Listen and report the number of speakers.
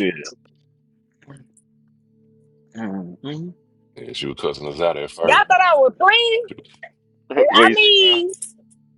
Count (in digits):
3